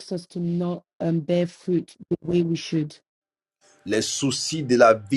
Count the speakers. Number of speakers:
2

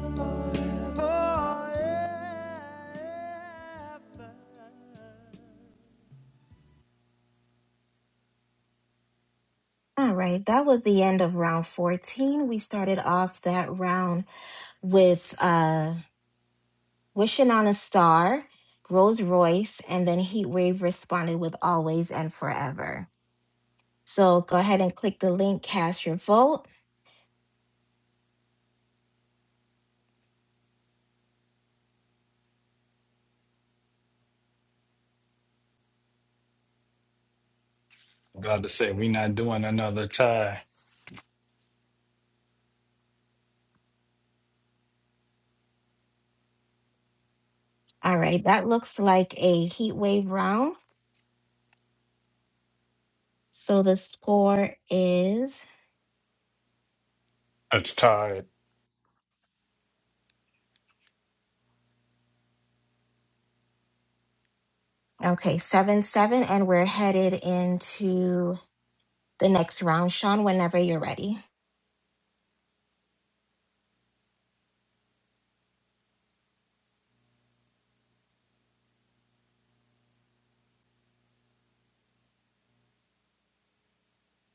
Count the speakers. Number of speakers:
3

